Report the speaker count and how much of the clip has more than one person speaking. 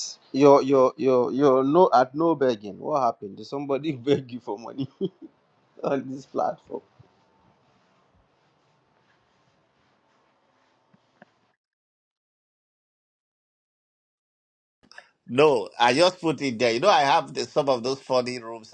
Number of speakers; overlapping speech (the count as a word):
two, no overlap